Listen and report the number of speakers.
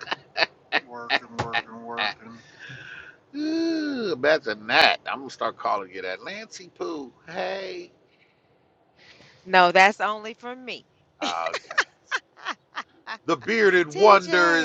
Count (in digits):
3